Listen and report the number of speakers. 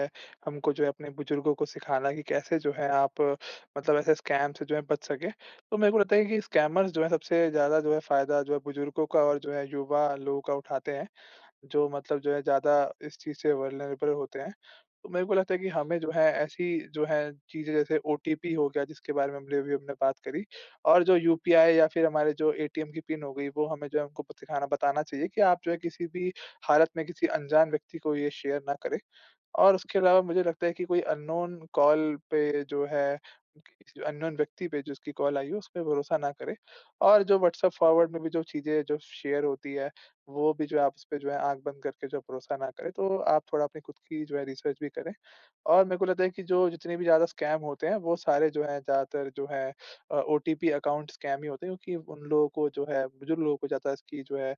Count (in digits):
1